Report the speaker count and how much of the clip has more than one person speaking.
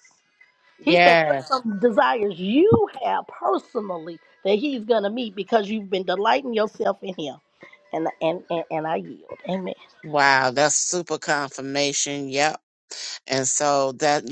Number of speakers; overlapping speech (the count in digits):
2, about 4%